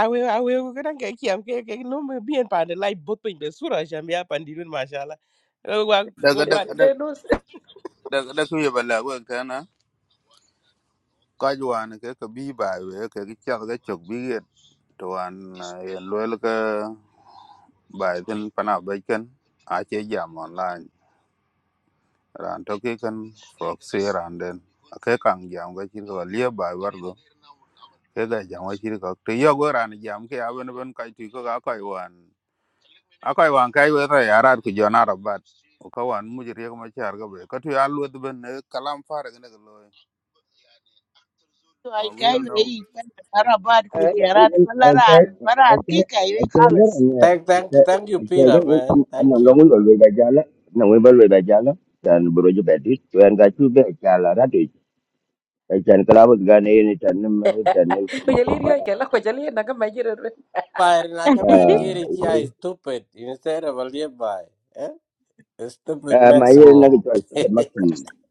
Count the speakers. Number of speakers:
six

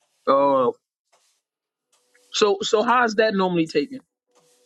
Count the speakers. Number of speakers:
one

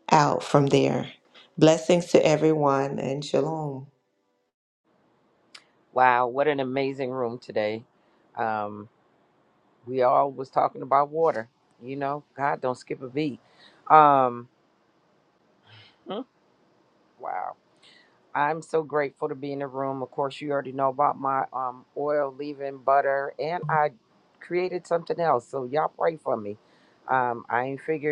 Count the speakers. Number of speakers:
two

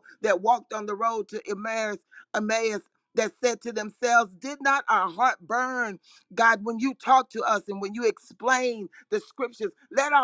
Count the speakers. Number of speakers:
one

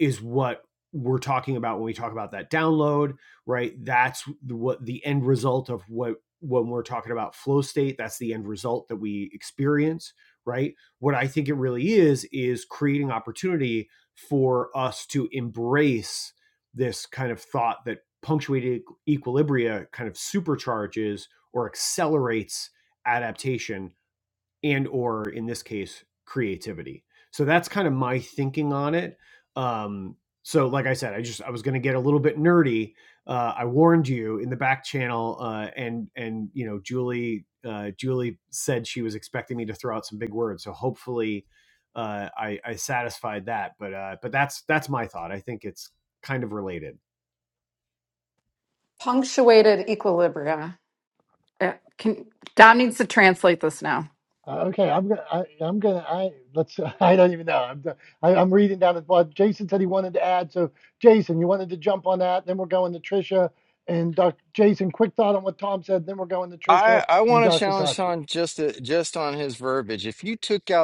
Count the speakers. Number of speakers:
four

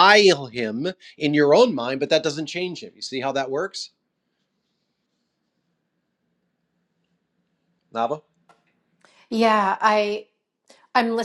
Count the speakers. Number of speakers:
two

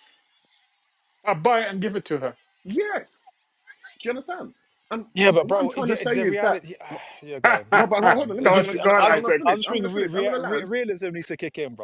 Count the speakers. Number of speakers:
three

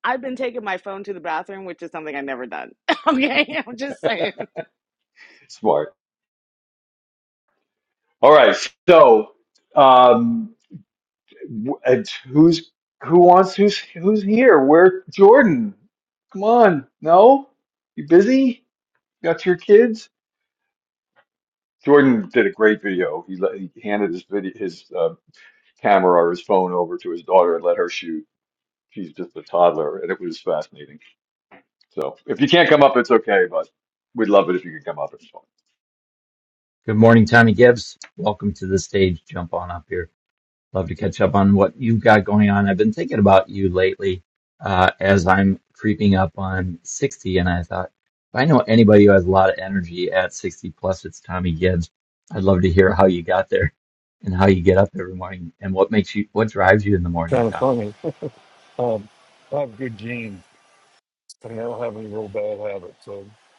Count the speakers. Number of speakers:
four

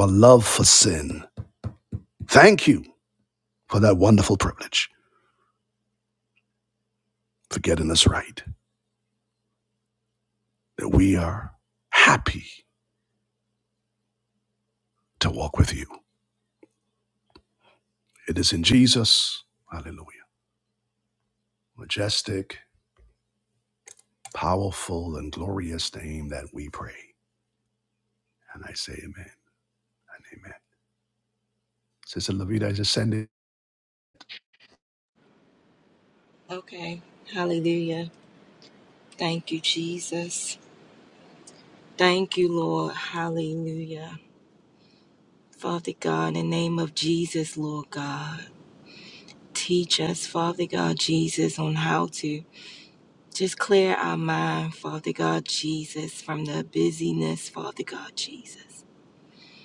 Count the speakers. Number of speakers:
two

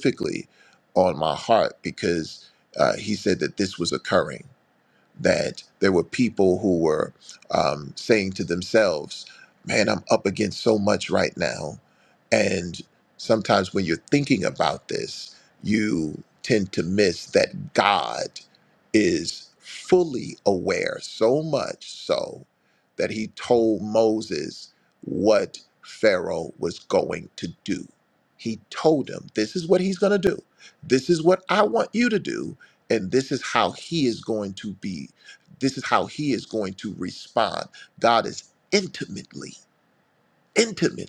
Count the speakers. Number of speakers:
one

